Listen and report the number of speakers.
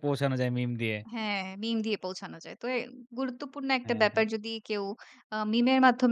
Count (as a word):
two